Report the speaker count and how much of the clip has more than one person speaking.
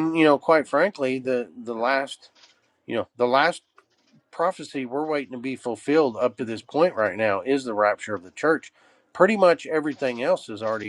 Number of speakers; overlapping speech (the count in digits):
1, no overlap